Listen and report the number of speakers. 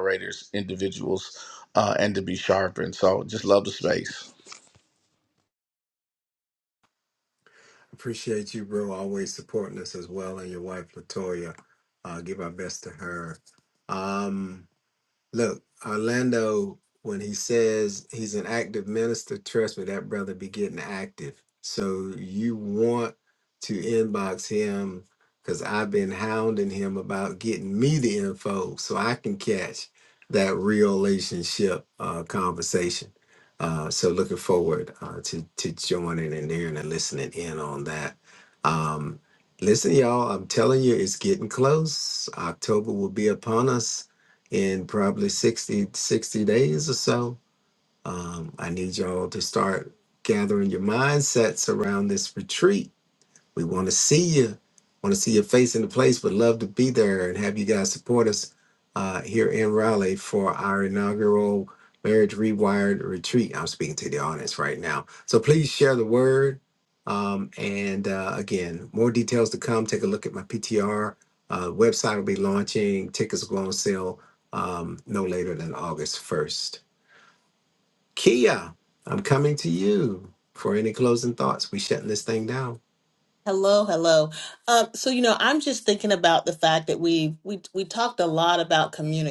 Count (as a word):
three